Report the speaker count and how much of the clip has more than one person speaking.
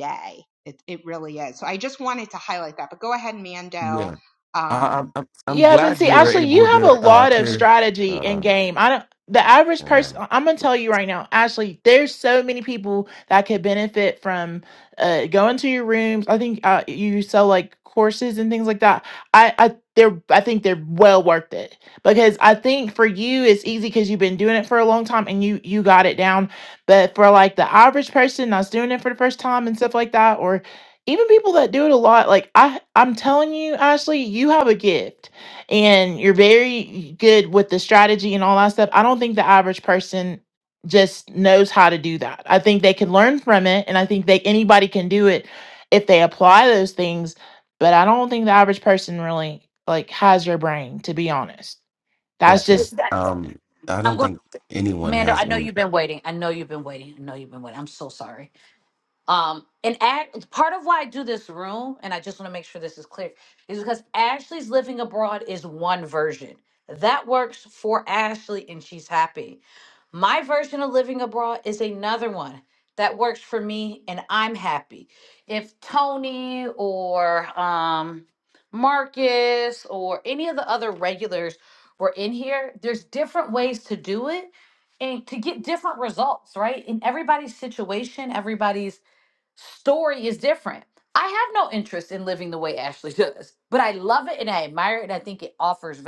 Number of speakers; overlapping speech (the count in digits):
4, about 5%